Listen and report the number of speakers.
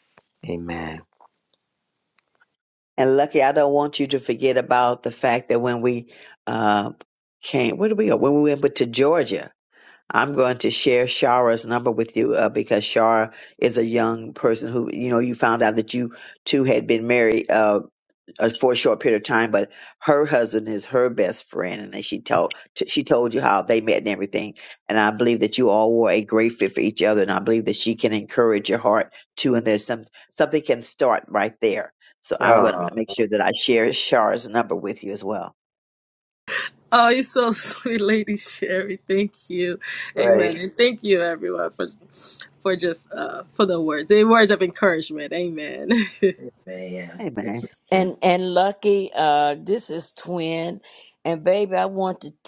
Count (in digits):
4